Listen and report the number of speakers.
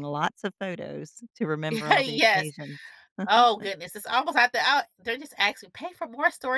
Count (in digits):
2